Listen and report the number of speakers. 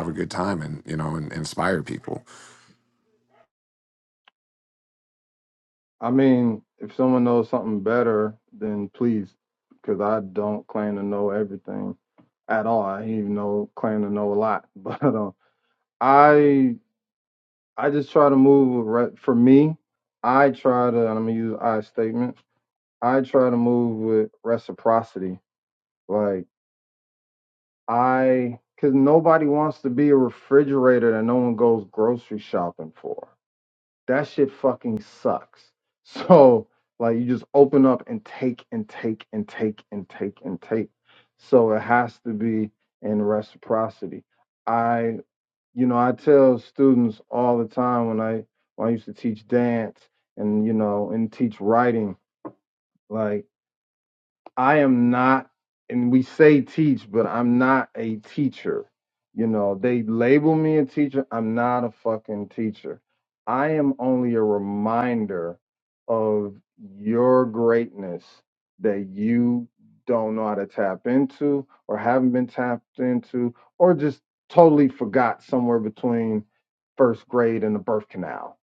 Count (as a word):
two